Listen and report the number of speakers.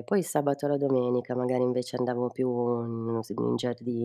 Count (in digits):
1